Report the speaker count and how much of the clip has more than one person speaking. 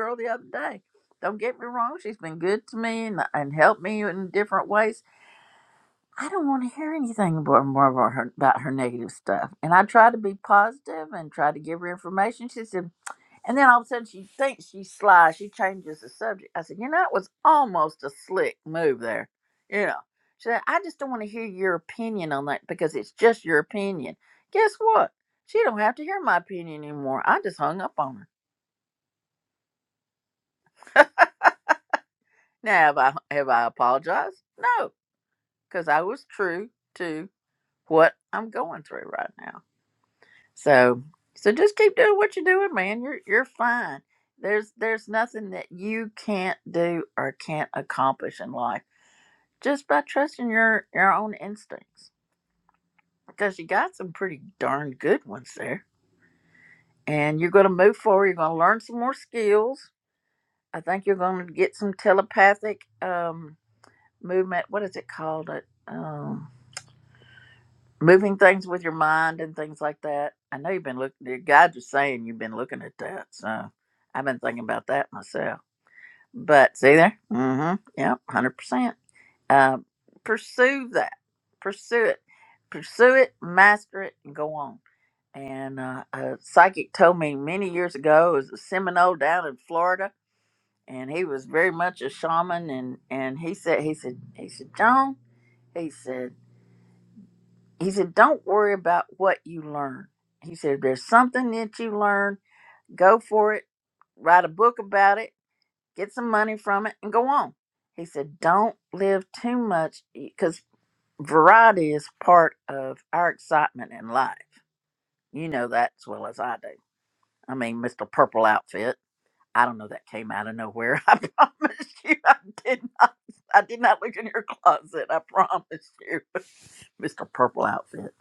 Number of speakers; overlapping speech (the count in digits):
1, no overlap